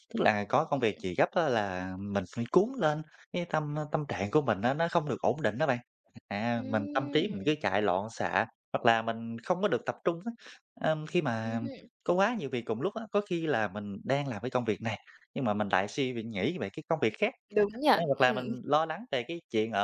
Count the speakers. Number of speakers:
two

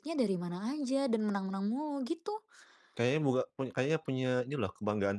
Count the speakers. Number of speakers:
two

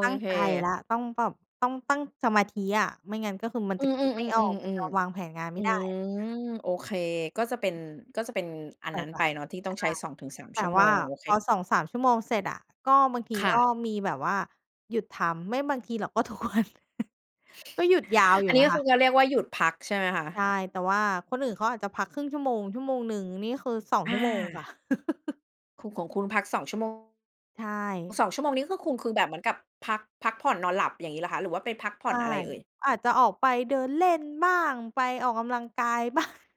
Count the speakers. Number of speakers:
two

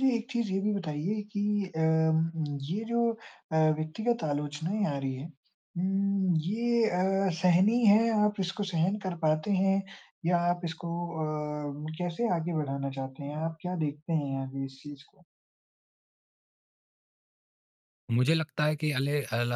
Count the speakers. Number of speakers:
two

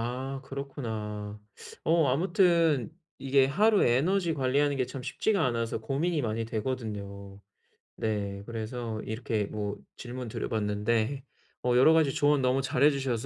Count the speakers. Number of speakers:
one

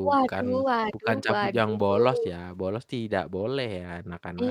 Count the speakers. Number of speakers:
two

